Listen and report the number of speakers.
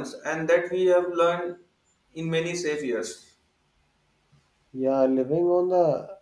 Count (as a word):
two